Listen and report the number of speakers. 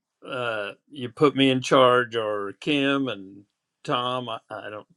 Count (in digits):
1